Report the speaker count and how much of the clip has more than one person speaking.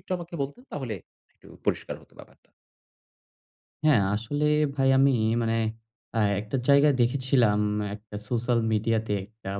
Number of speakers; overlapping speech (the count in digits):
2, no overlap